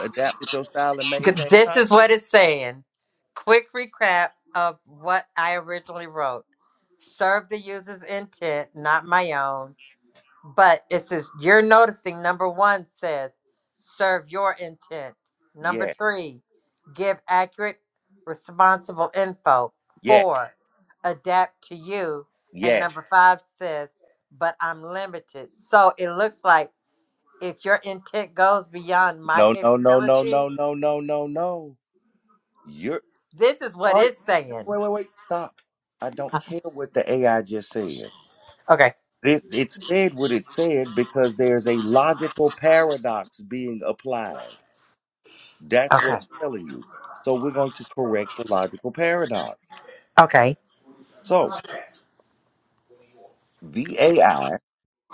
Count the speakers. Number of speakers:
two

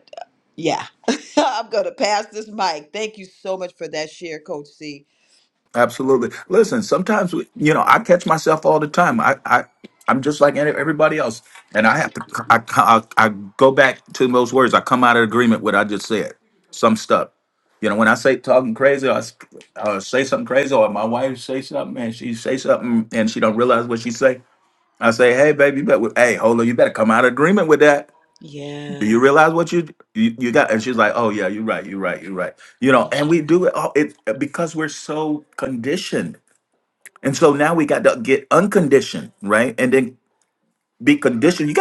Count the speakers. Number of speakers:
two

